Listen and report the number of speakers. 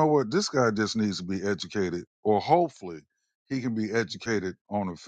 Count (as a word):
one